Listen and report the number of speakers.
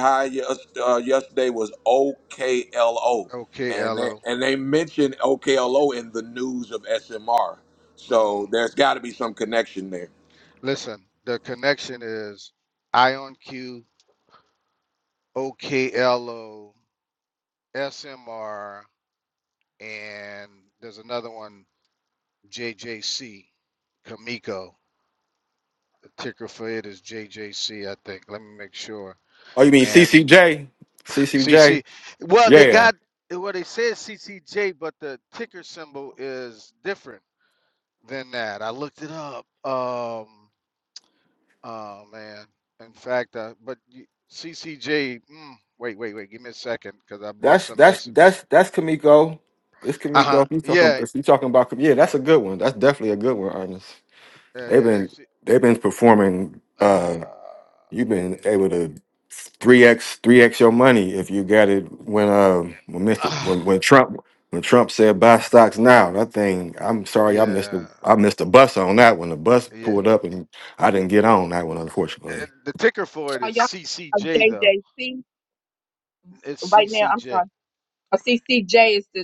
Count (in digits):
4